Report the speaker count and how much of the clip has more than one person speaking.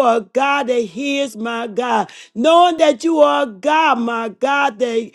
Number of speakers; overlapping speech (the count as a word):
one, no overlap